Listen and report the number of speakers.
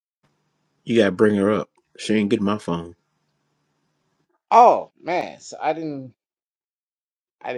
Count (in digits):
2